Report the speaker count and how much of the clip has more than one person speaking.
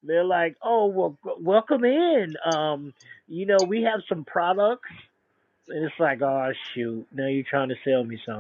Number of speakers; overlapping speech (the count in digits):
1, no overlap